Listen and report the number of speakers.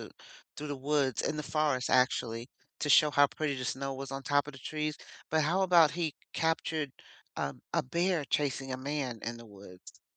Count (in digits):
1